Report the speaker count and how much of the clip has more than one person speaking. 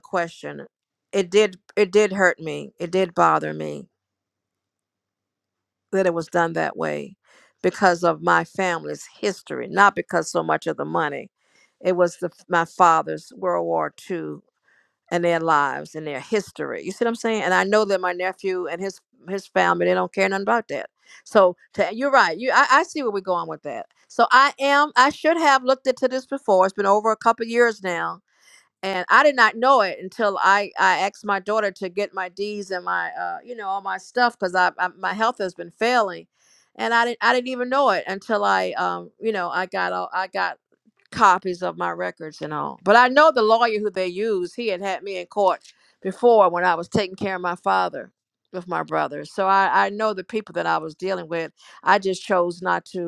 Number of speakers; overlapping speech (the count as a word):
one, no overlap